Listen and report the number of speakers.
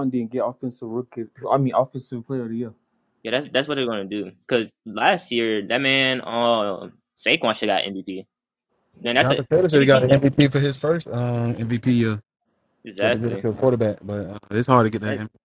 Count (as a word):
three